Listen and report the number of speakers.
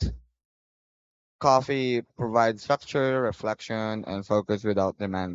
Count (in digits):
1